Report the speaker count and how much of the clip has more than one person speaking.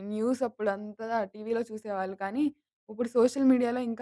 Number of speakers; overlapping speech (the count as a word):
one, no overlap